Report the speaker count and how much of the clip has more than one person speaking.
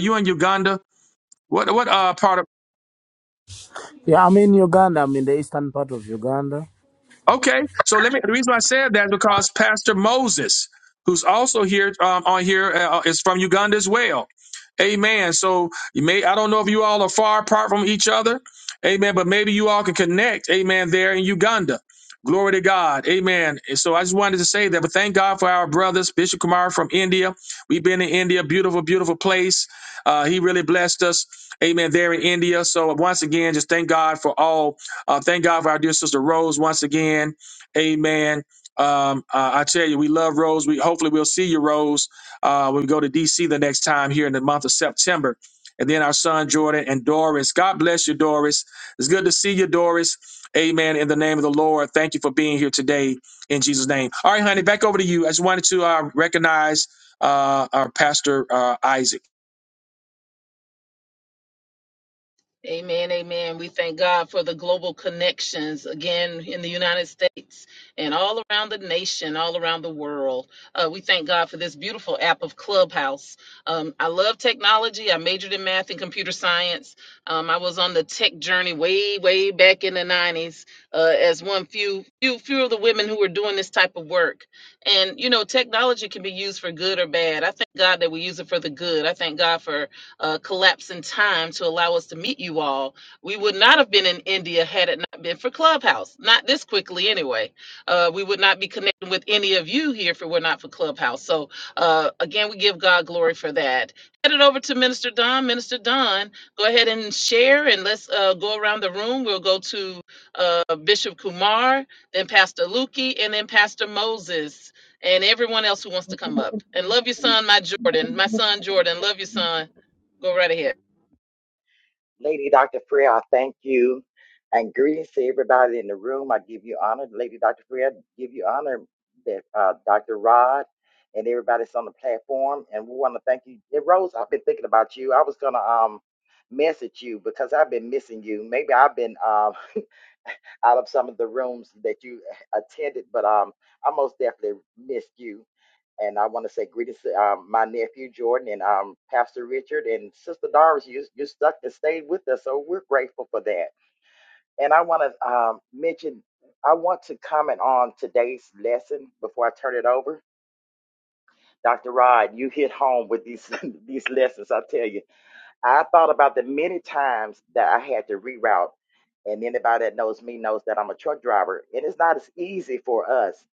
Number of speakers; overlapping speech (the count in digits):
4, no overlap